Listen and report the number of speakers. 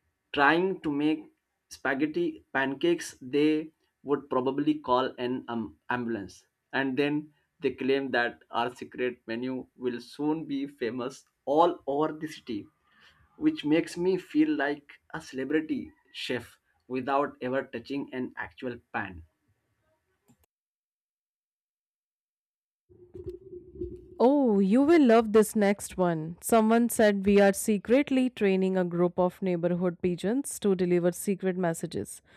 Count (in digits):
2